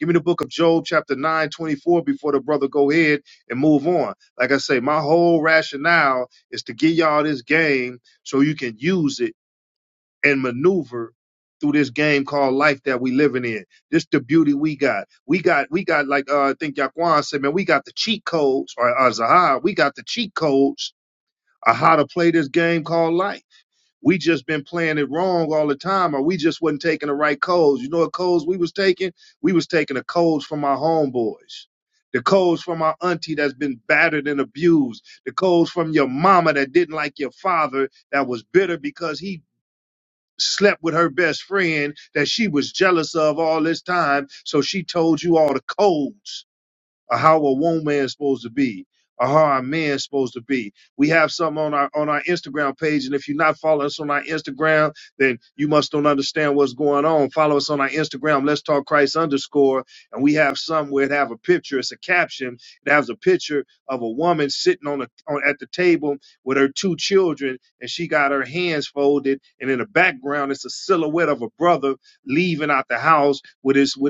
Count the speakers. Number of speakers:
one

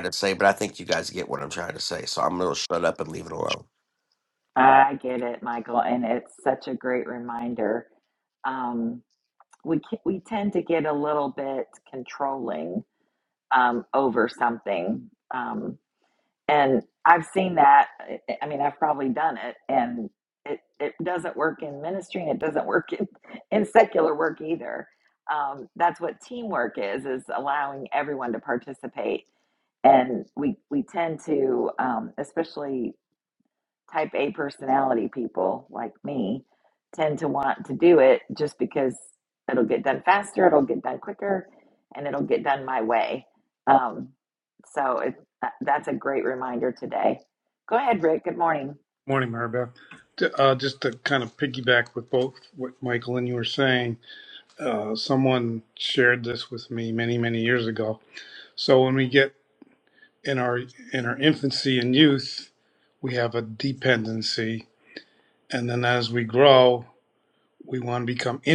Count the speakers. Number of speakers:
three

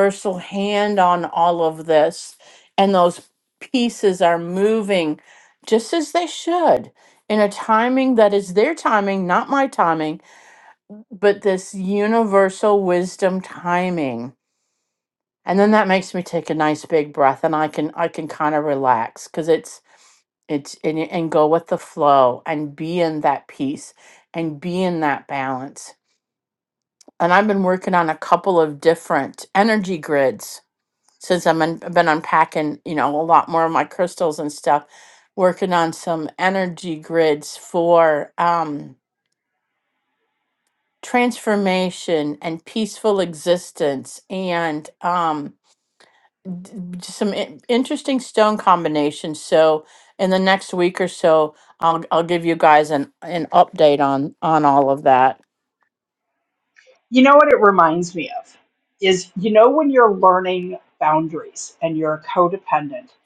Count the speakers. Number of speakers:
two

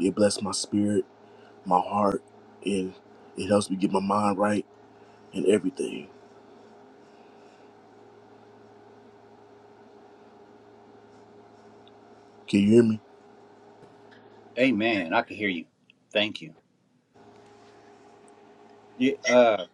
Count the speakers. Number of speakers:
two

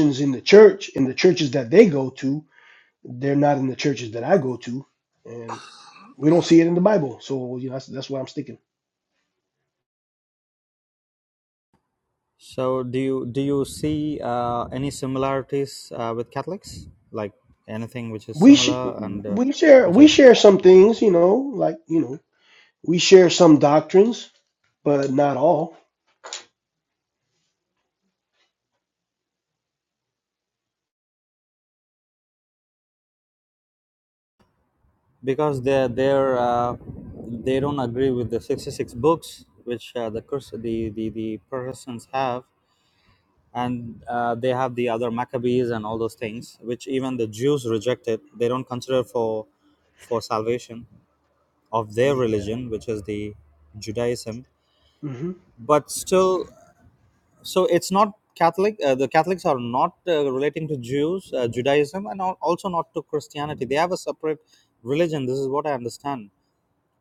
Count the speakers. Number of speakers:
two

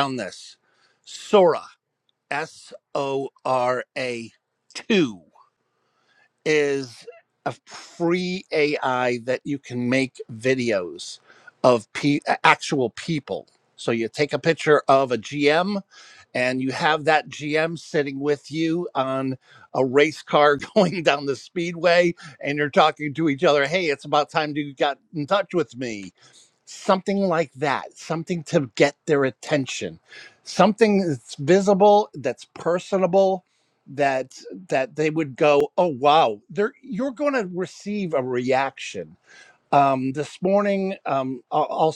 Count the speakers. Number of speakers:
one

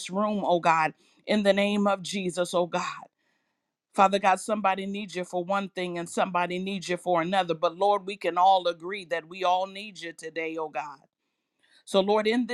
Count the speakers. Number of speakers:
one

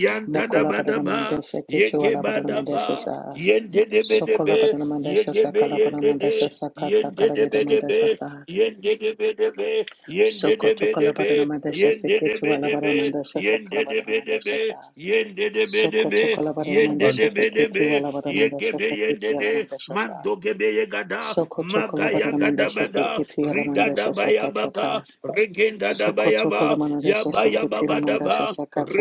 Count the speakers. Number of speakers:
two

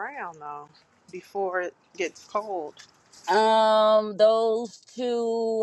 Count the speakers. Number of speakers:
two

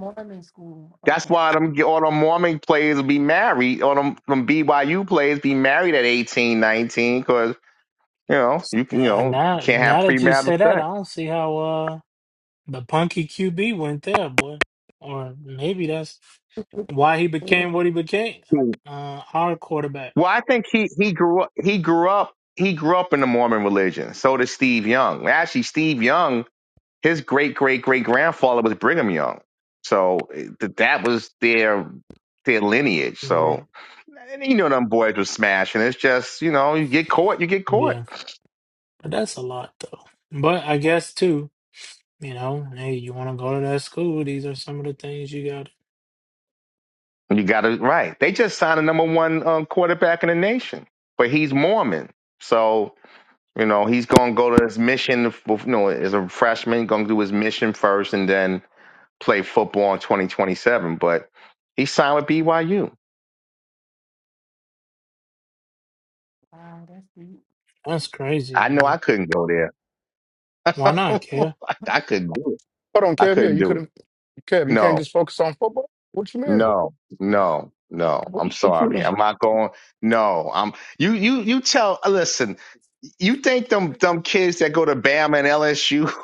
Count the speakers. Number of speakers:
four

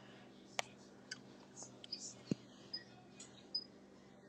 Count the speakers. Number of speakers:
zero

